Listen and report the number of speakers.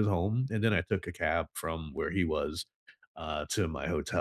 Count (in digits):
1